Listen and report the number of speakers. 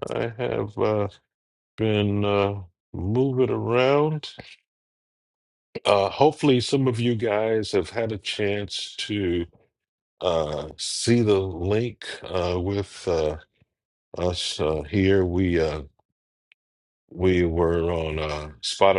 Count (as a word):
one